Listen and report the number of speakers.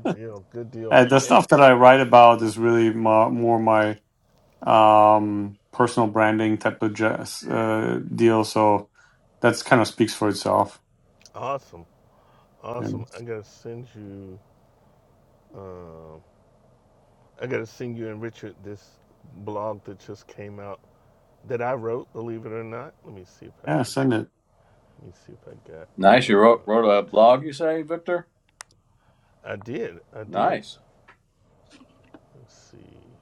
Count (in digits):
3